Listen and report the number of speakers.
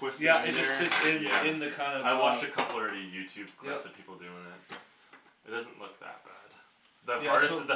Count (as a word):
two